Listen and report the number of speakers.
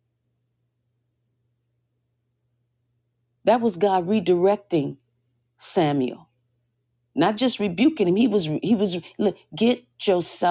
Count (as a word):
one